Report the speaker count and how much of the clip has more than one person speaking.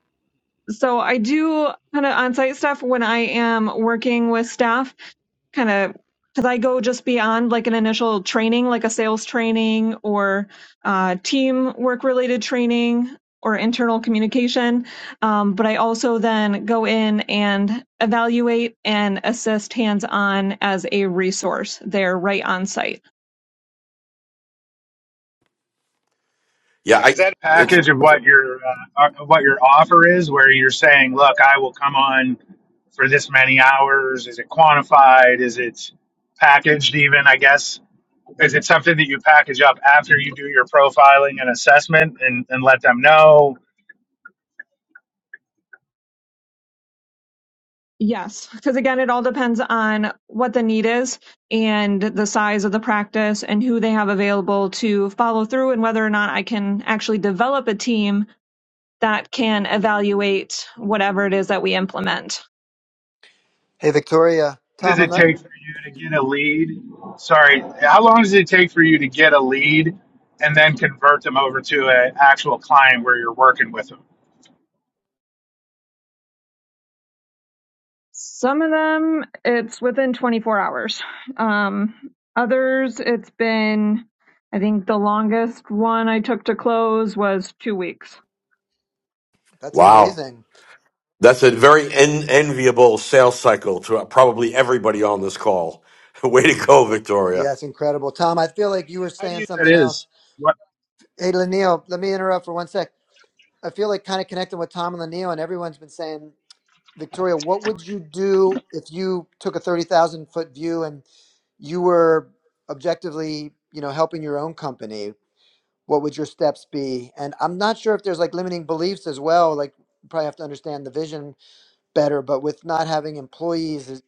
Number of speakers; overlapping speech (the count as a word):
four, about 1%